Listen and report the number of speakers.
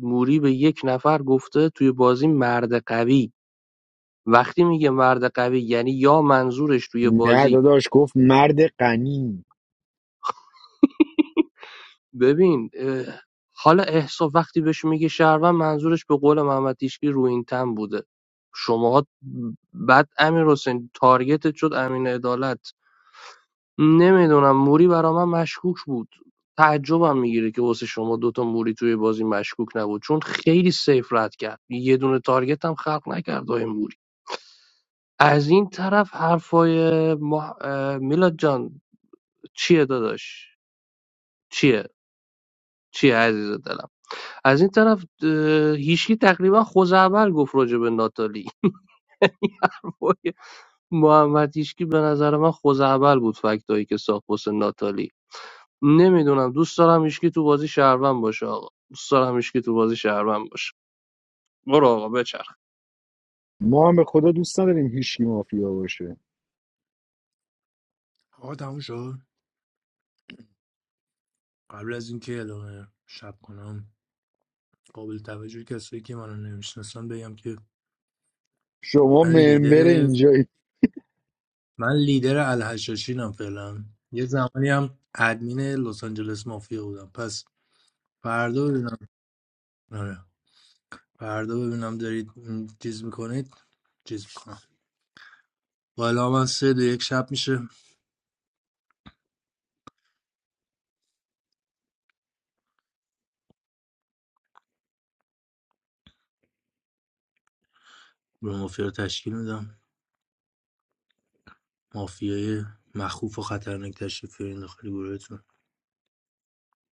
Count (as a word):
three